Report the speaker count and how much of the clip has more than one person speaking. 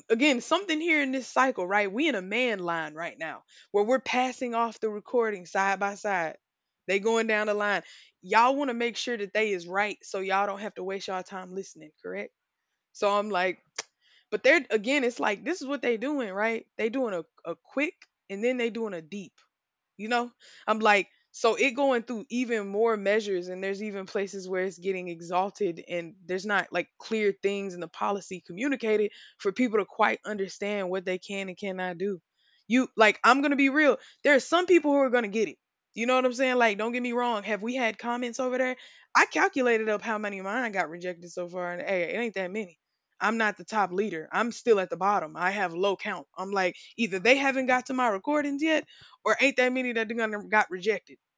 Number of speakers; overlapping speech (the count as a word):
one, no overlap